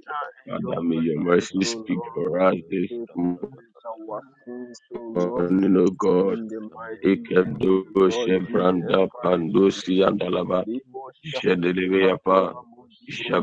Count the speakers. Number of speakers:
two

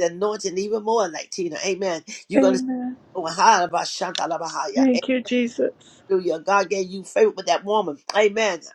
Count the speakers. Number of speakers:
two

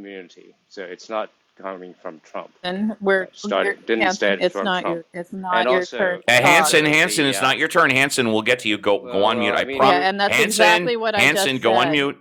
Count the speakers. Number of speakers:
three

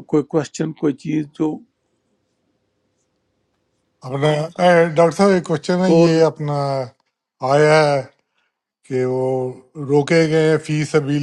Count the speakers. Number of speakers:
two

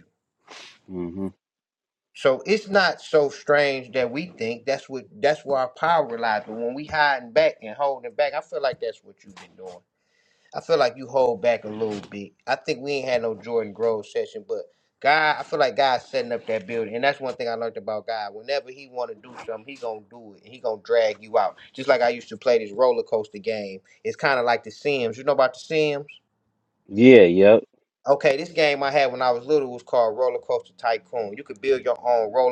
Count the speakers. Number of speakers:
two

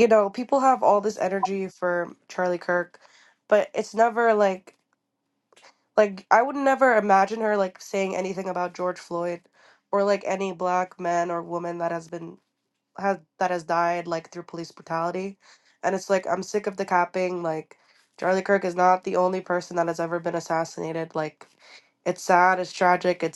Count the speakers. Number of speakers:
one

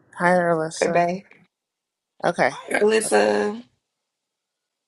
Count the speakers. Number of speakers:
two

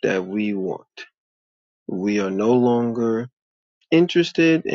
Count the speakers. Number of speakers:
one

